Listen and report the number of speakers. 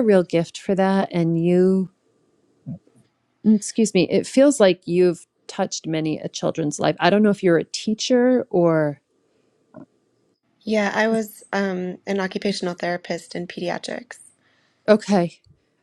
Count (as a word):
two